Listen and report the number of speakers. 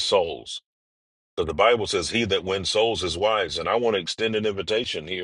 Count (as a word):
one